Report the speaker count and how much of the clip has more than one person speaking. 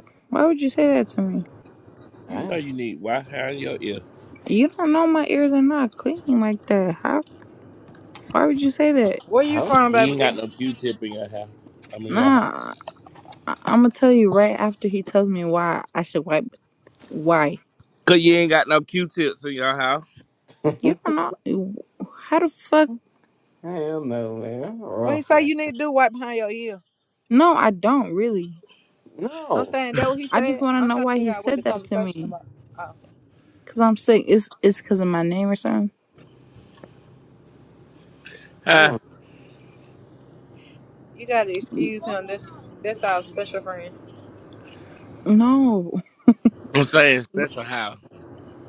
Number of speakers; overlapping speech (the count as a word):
four, about 9%